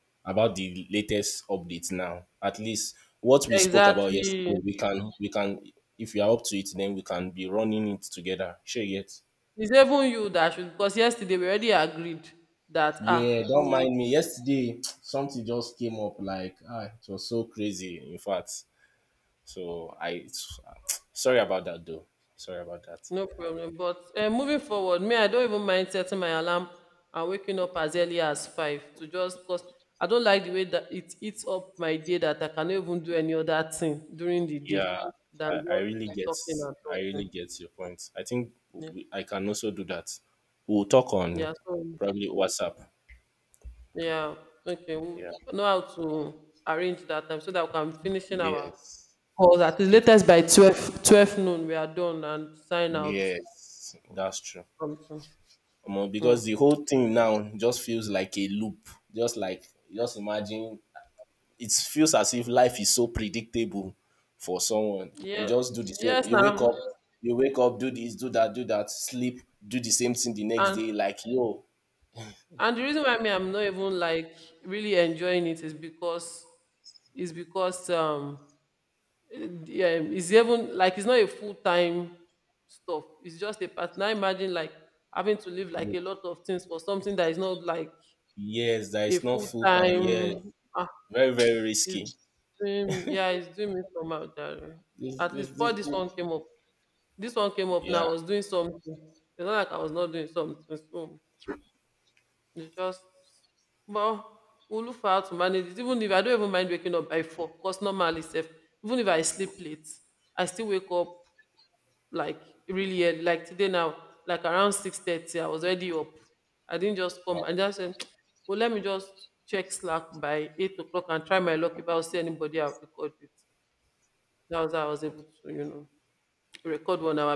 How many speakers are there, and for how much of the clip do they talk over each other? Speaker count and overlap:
two, about 7%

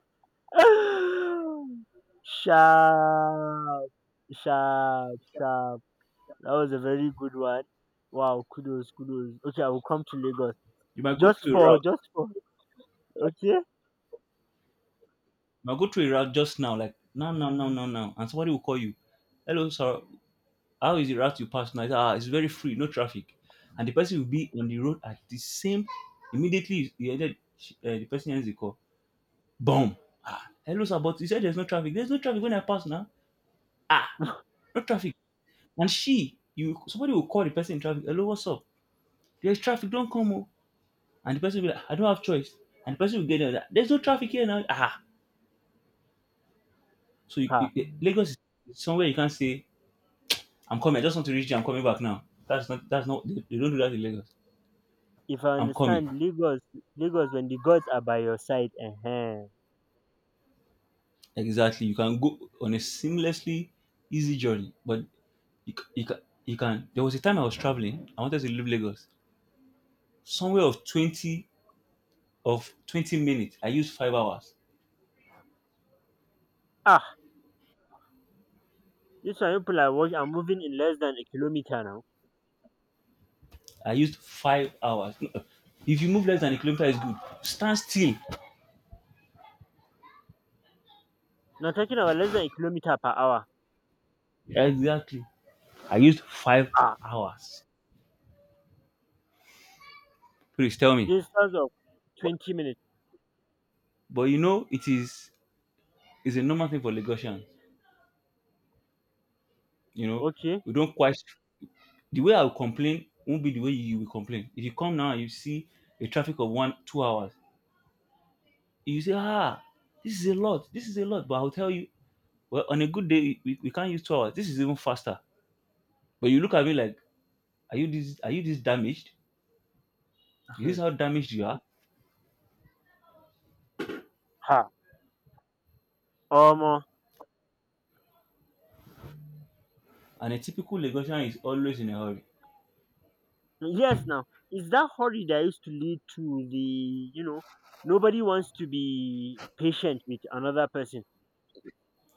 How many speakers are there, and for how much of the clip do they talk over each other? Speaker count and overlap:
two, about 1%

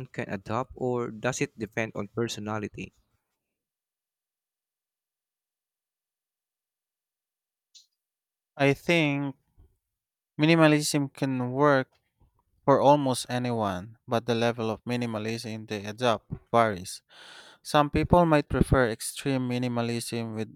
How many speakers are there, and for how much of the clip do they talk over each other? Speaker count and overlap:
two, no overlap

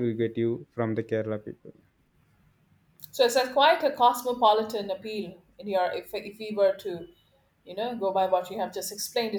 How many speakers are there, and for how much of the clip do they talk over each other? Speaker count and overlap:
two, no overlap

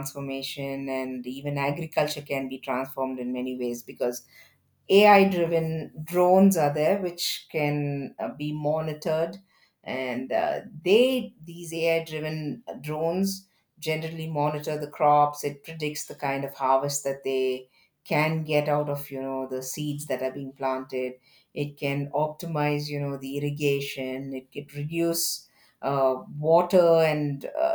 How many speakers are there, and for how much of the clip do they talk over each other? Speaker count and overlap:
one, no overlap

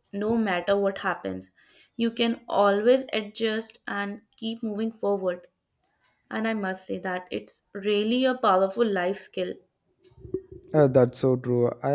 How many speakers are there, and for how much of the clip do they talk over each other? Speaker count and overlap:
two, no overlap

